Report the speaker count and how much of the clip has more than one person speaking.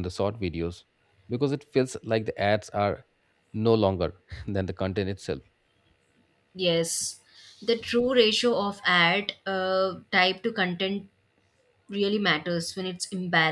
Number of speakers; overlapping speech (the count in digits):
2, no overlap